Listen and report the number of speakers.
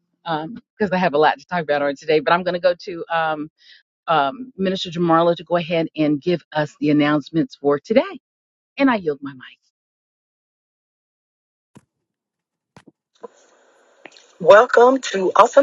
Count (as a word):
two